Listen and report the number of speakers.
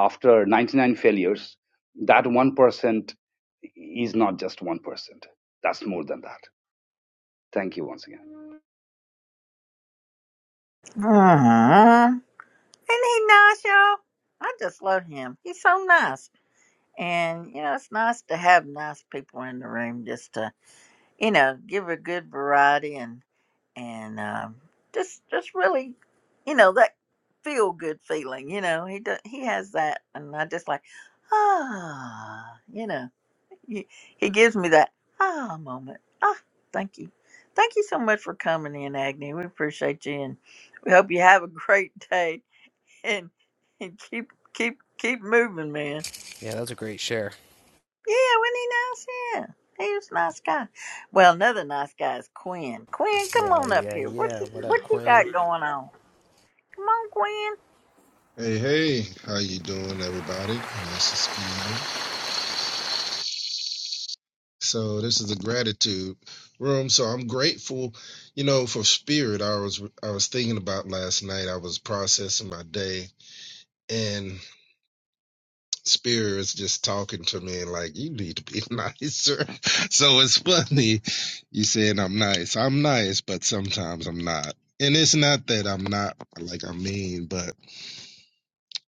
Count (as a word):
four